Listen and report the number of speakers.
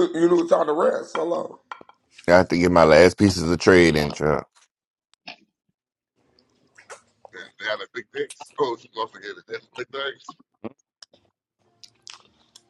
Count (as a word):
three